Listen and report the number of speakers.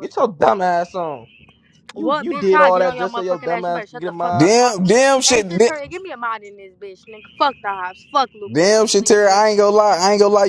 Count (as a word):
three